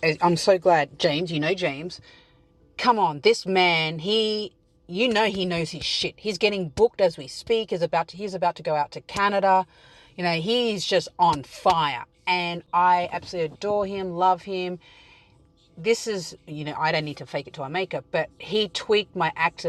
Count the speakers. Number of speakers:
1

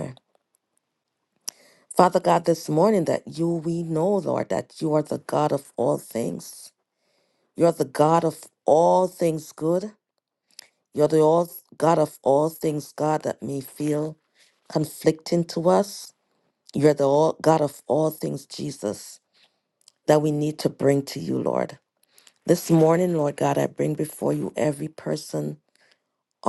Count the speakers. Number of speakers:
1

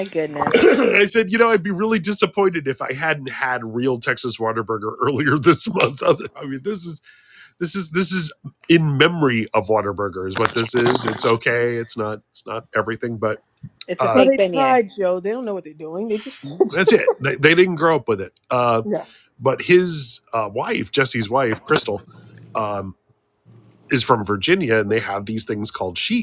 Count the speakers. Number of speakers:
3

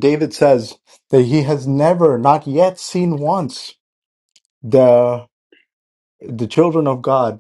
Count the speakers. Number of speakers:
1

